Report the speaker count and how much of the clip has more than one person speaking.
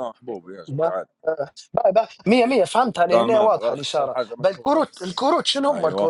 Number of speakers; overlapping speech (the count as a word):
two, about 41%